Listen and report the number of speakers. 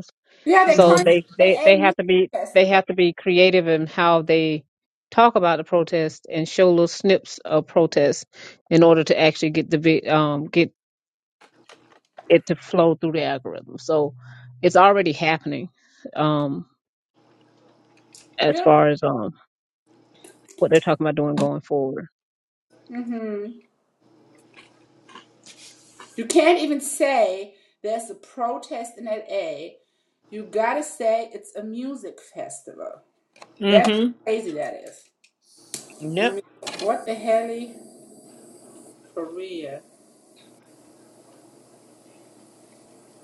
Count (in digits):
3